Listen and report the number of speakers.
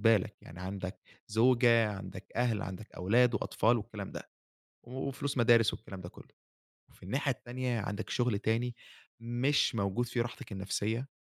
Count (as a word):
one